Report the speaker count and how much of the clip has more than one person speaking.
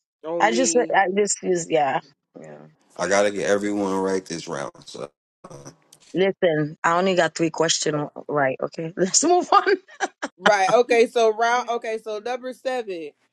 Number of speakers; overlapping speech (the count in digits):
3, about 4%